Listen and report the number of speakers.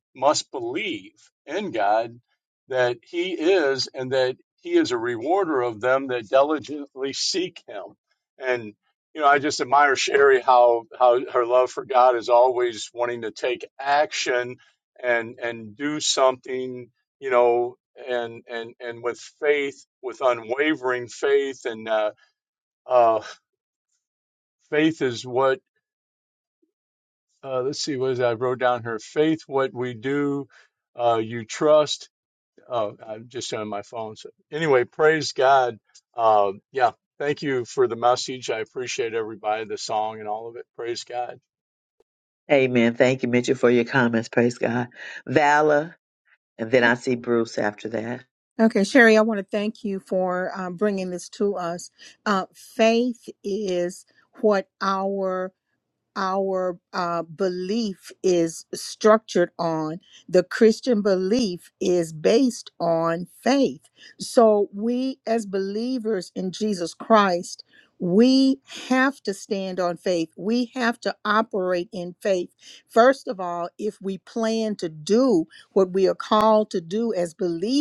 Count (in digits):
3